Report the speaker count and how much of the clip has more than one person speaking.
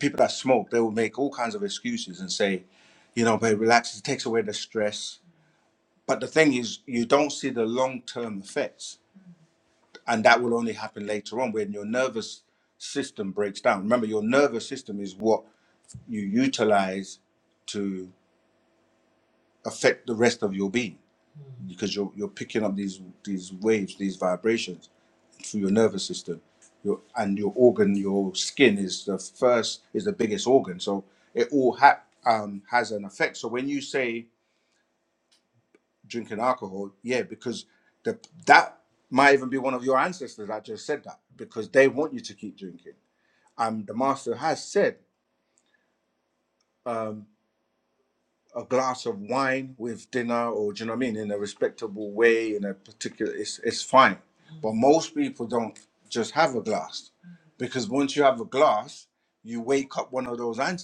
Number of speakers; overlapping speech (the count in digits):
1, no overlap